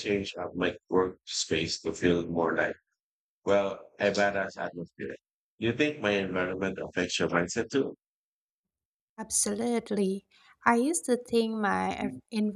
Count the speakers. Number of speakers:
two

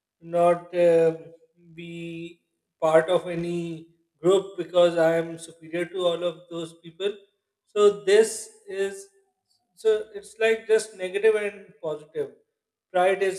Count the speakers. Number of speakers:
one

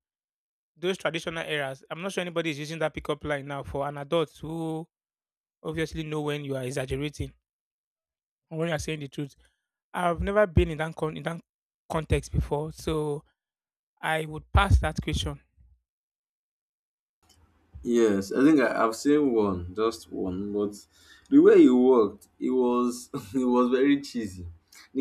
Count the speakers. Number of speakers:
two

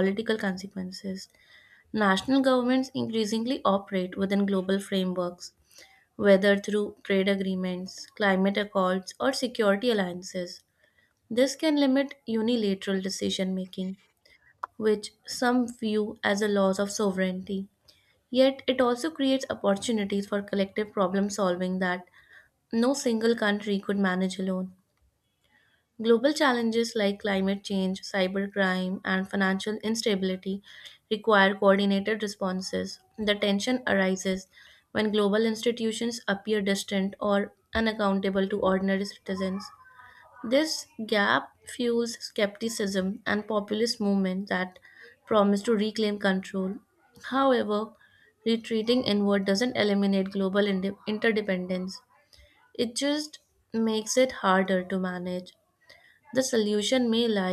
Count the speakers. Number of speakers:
one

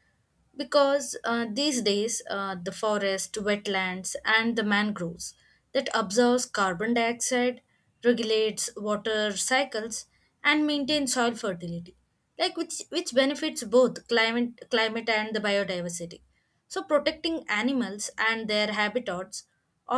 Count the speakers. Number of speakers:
one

